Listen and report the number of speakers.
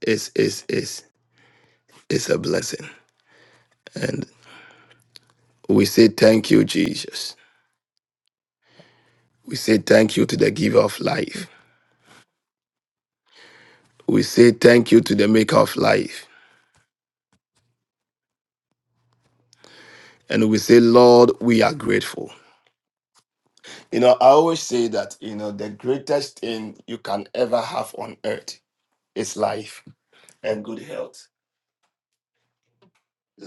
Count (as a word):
one